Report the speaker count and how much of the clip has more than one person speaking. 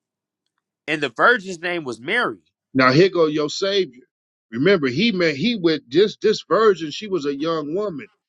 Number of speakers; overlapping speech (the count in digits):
2, no overlap